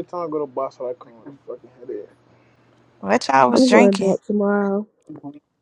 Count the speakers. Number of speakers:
three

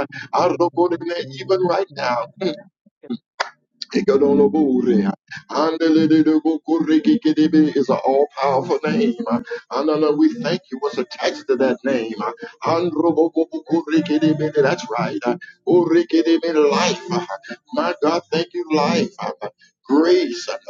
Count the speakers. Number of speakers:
one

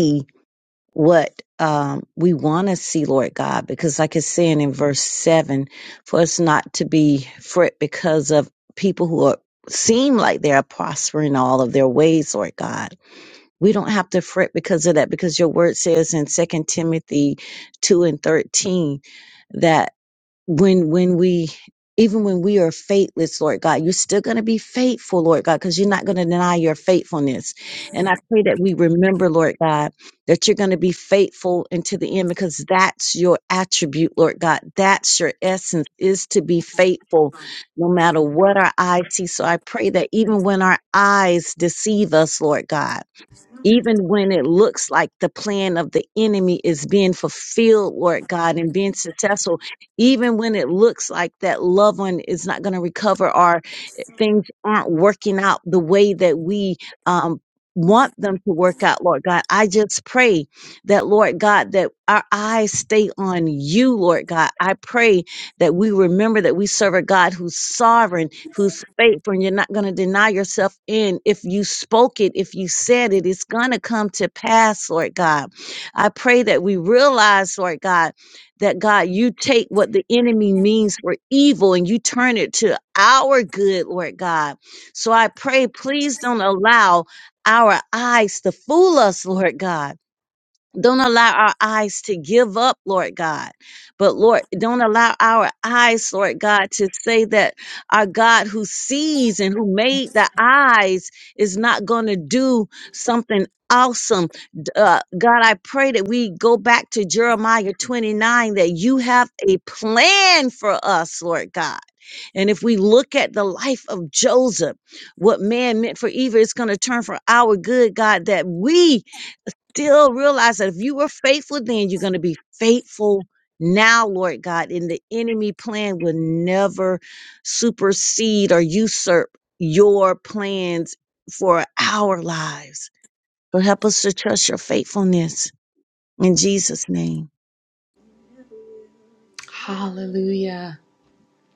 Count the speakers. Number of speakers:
two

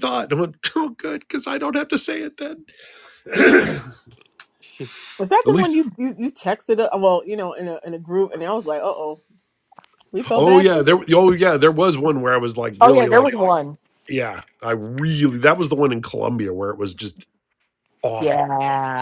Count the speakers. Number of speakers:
three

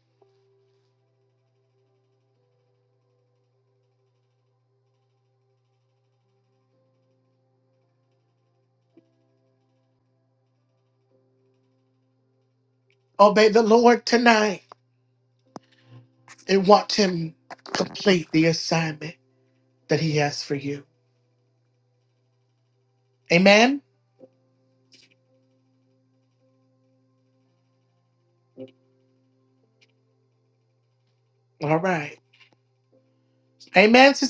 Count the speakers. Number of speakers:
one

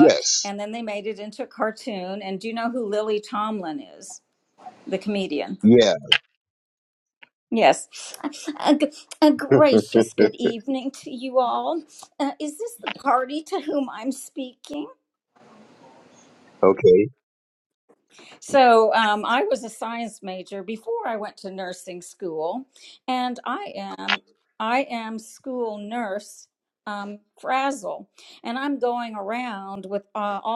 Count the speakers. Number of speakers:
two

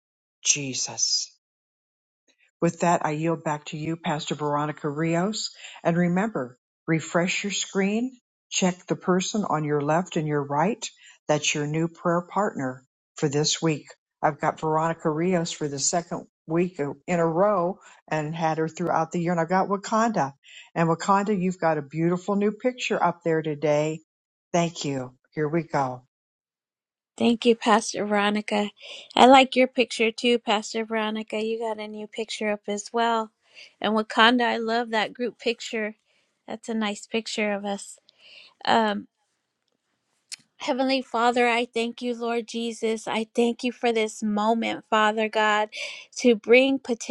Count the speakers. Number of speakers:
two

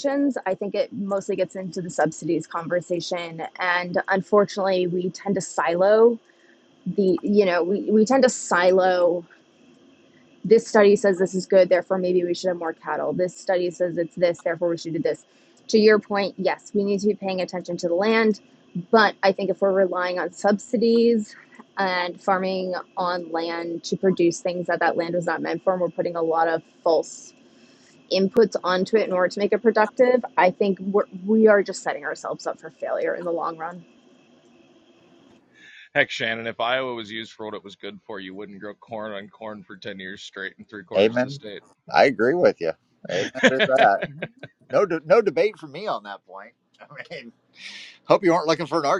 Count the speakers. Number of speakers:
three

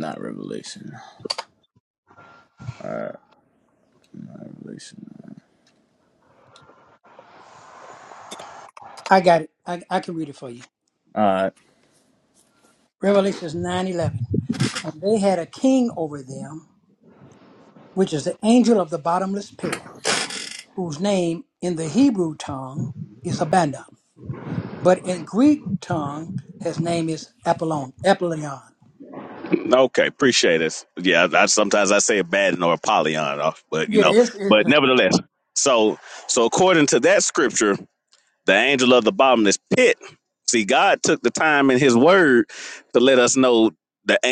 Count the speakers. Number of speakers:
three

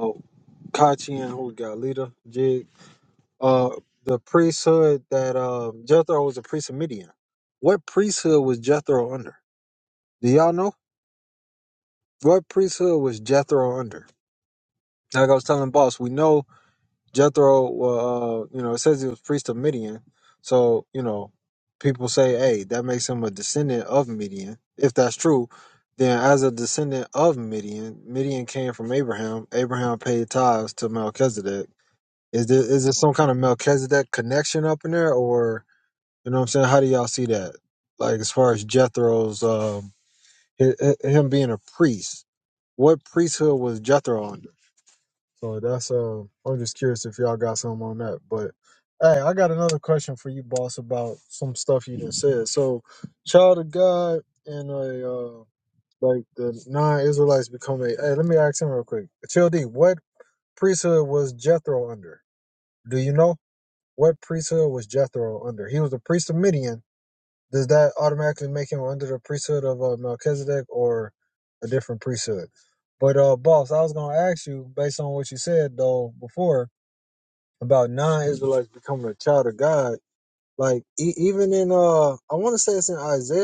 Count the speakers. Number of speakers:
one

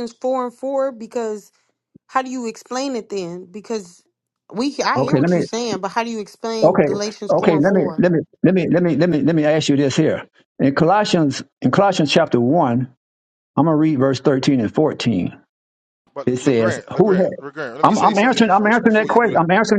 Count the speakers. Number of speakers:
three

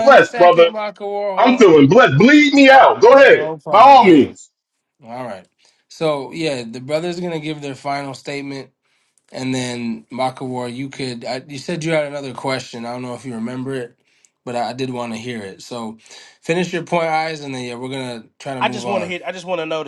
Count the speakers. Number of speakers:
three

